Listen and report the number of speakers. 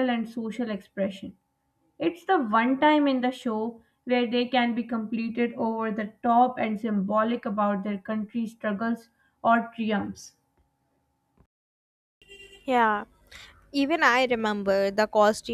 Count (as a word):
two